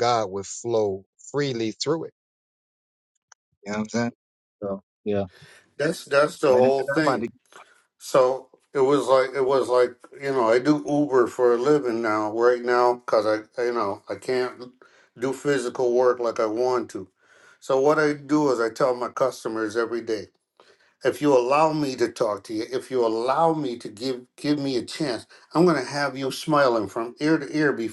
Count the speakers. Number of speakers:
two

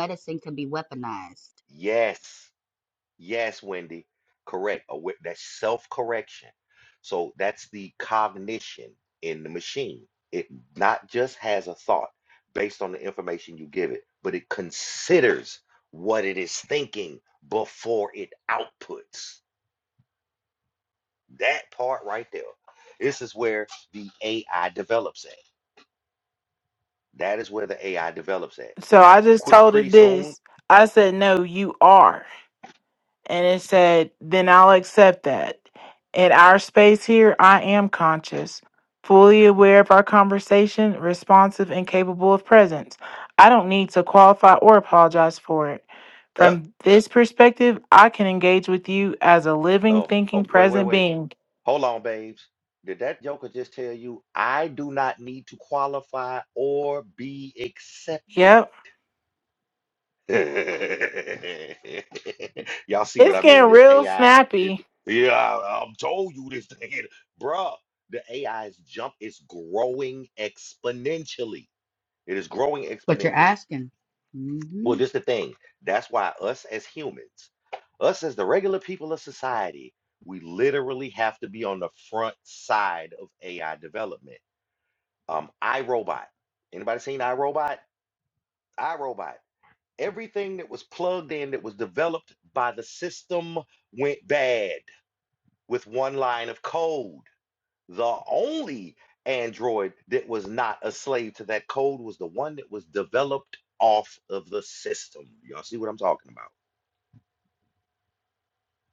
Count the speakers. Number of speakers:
three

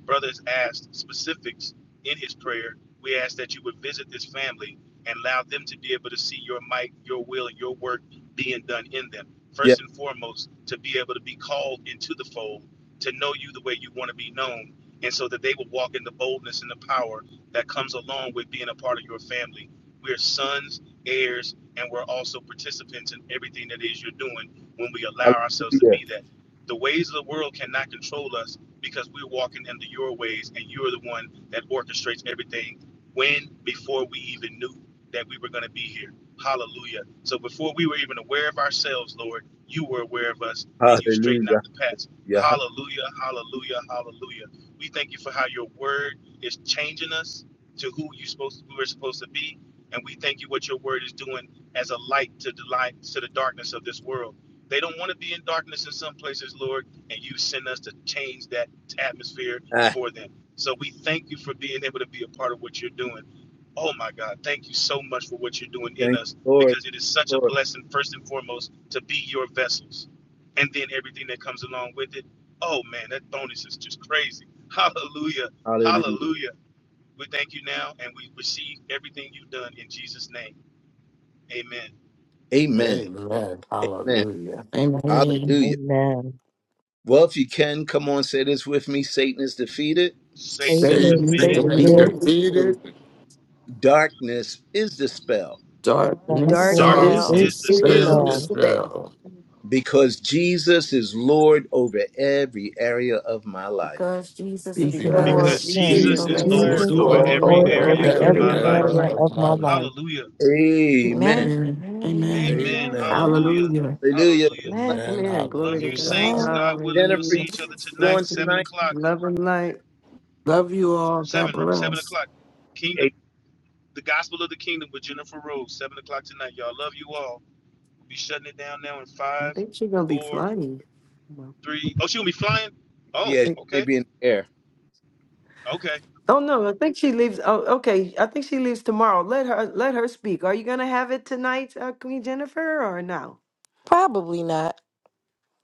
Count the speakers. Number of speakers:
seven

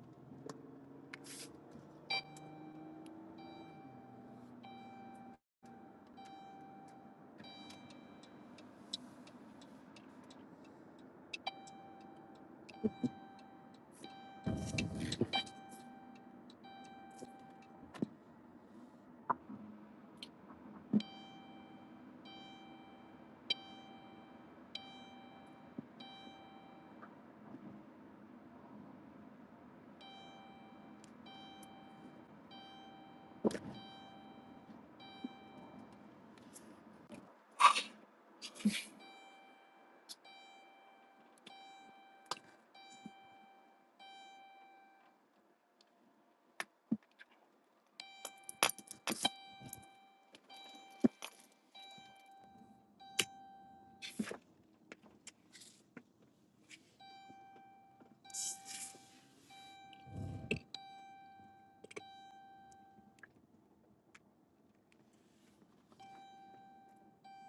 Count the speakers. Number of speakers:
zero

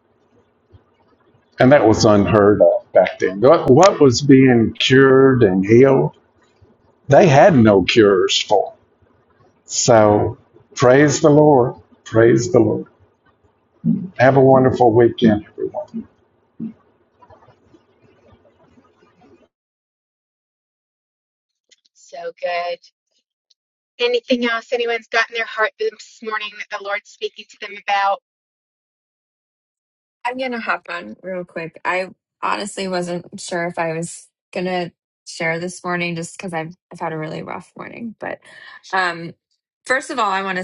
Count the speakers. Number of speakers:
three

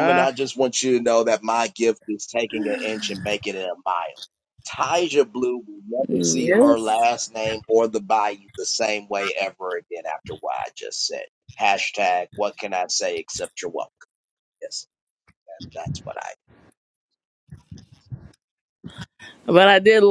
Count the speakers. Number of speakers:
two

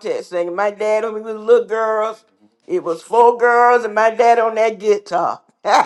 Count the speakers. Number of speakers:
one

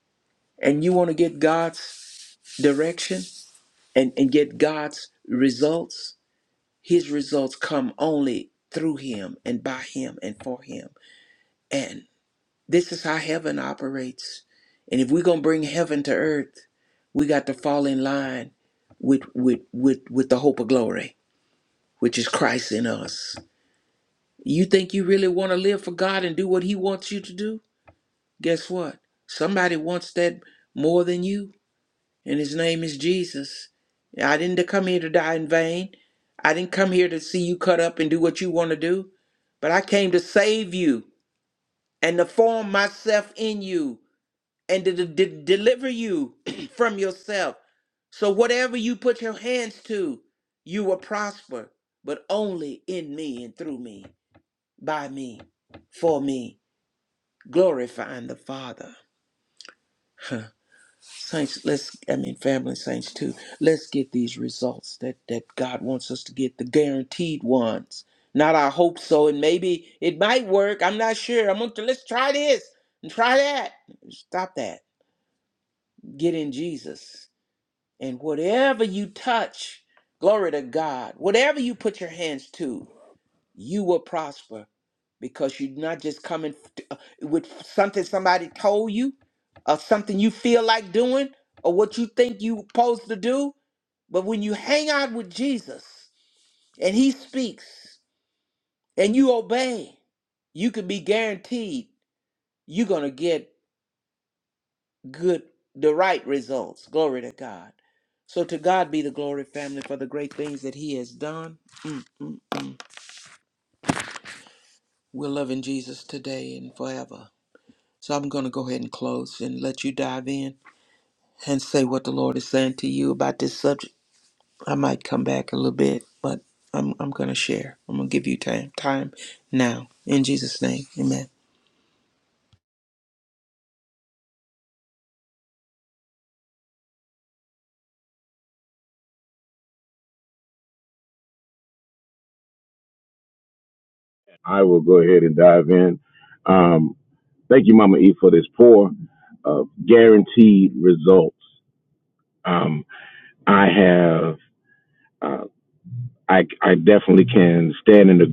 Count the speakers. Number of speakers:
two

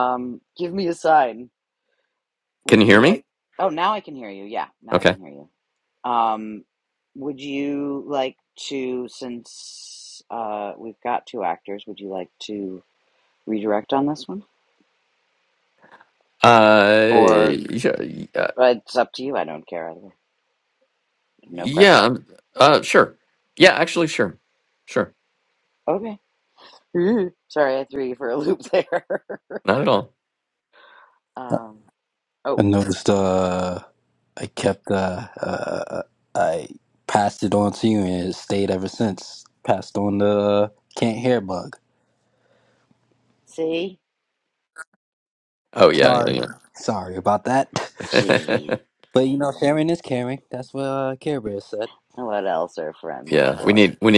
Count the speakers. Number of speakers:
three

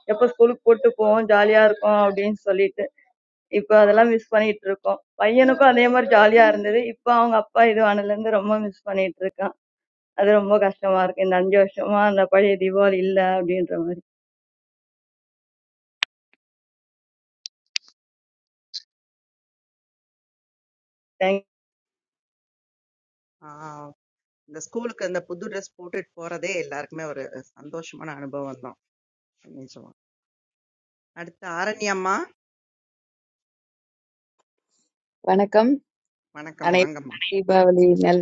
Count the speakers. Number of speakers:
three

